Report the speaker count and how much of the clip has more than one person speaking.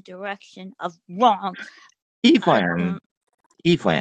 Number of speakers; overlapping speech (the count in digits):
2, about 13%